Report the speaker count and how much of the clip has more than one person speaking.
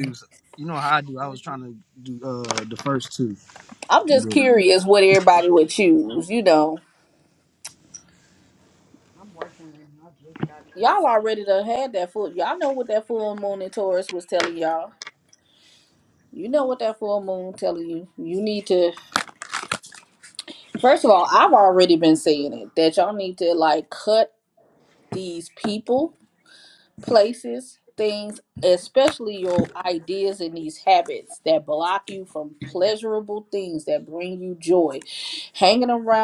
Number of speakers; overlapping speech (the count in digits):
3, about 2%